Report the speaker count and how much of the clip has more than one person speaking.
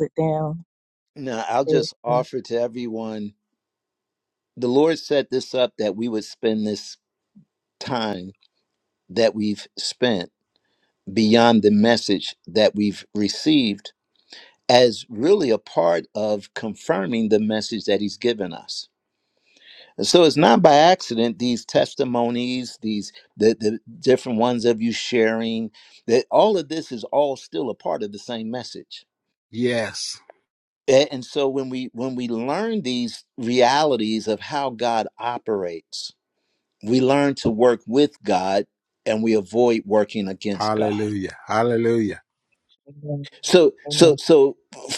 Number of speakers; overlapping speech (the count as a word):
three, about 3%